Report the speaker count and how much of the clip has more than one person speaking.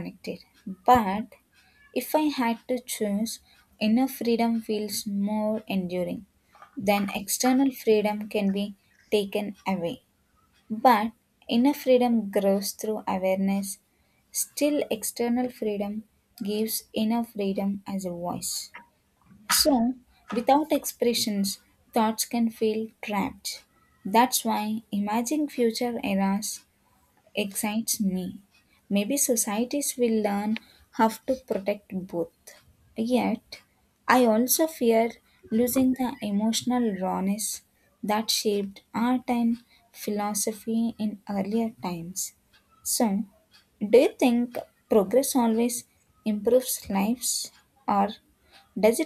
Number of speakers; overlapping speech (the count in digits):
1, no overlap